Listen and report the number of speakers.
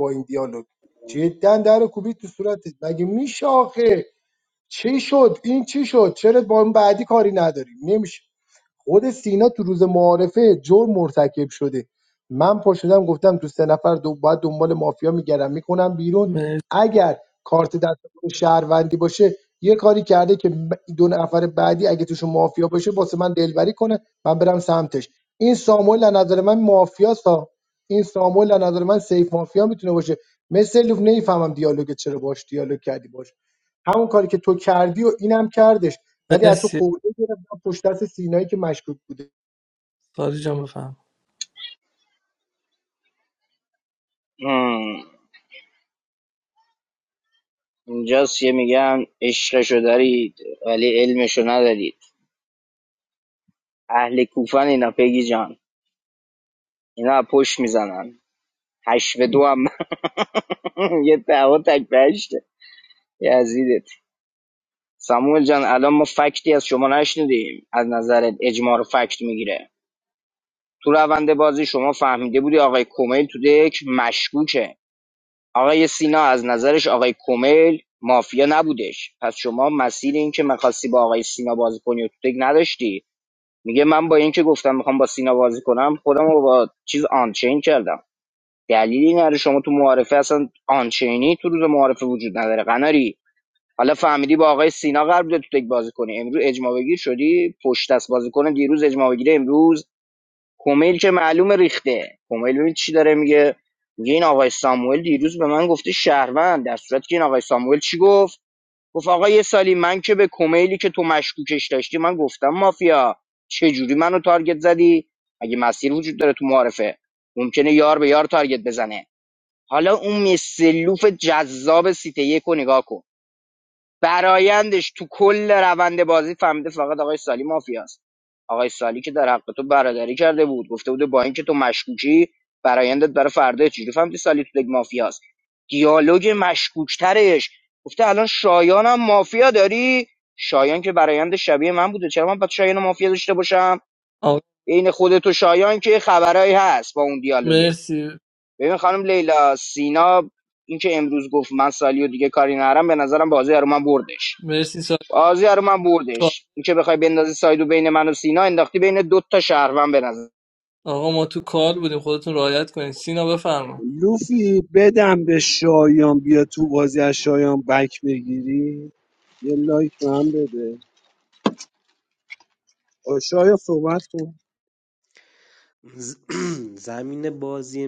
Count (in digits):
5